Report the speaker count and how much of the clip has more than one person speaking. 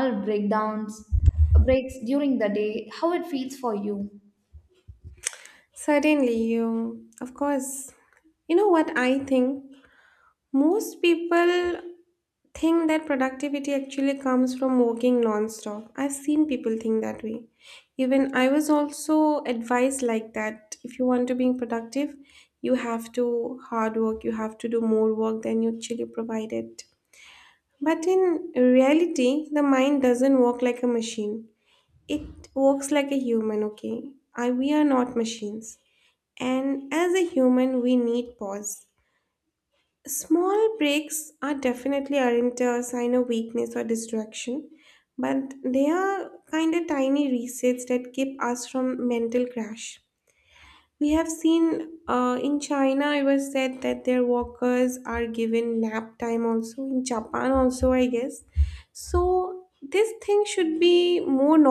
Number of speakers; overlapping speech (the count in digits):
2, no overlap